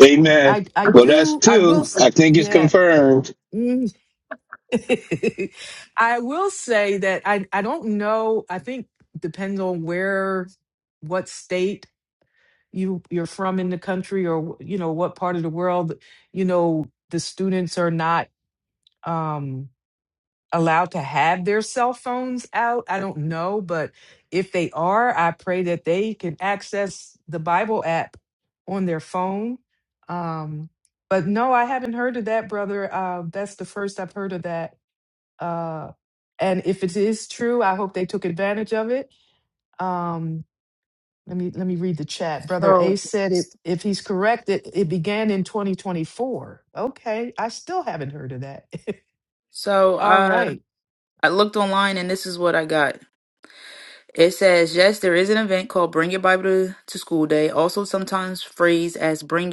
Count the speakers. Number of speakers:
3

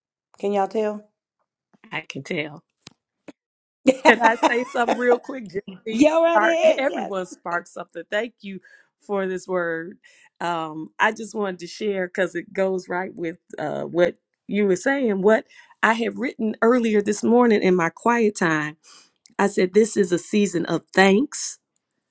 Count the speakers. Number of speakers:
2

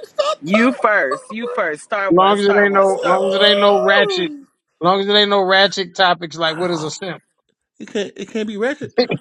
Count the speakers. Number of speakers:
3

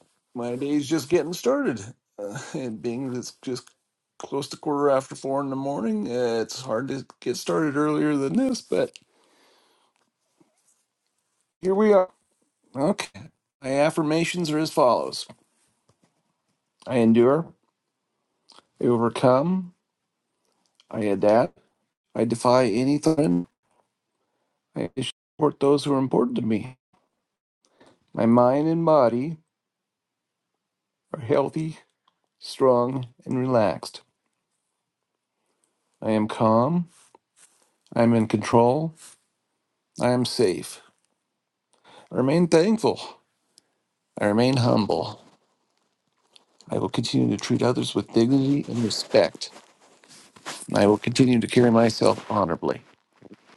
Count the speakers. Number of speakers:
1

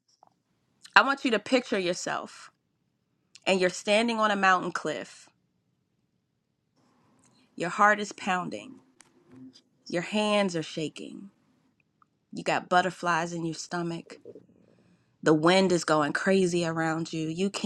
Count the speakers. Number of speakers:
1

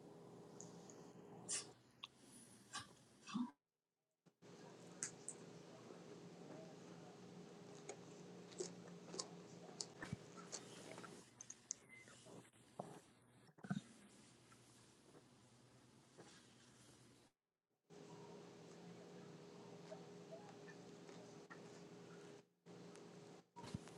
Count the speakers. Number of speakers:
0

